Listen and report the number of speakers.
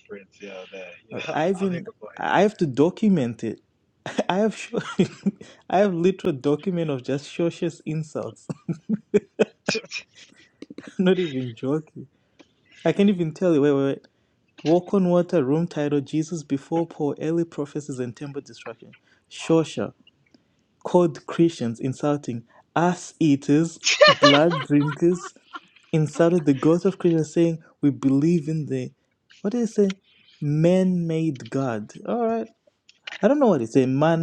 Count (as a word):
two